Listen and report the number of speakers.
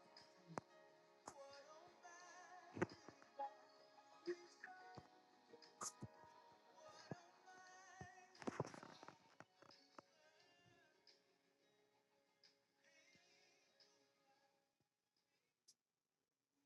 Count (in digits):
0